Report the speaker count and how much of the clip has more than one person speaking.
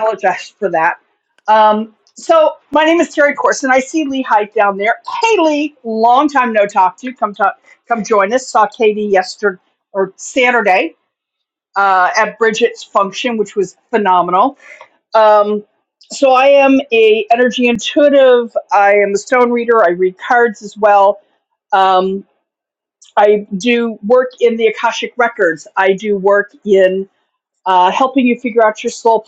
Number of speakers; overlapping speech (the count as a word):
one, no overlap